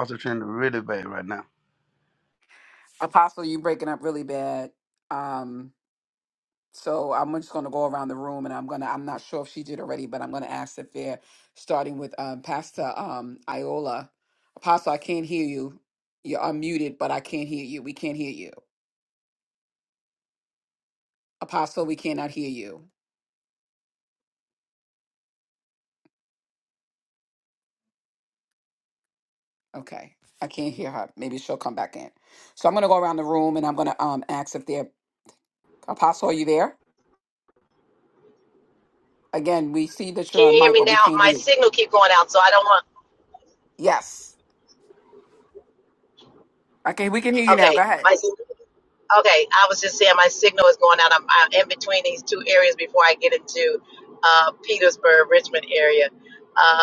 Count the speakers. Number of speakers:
three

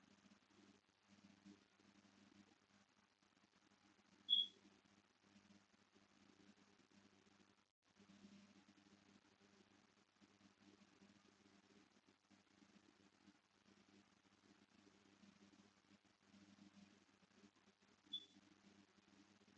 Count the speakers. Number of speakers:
zero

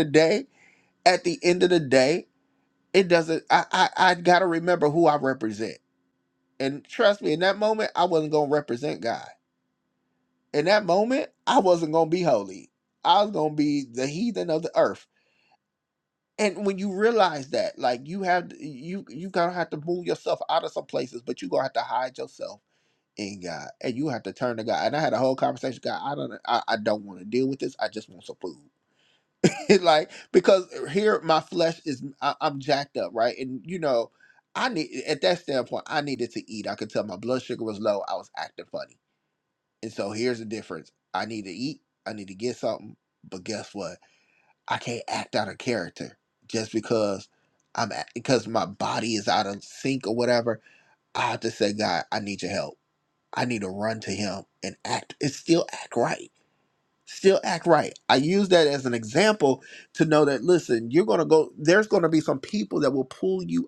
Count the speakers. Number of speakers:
one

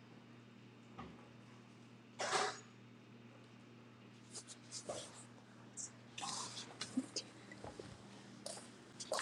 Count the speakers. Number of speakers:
zero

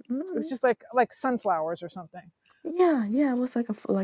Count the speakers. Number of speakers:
two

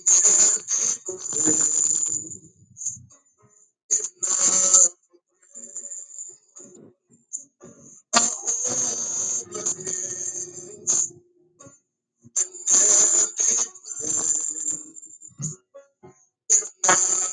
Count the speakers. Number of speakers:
zero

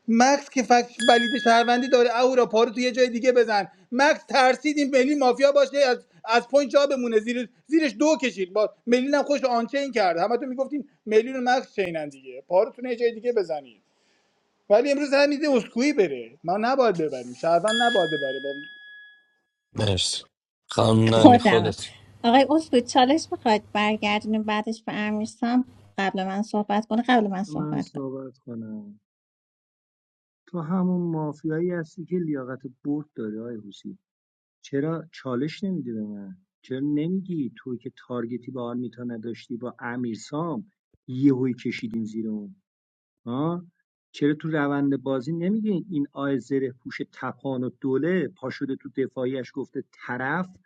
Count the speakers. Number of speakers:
four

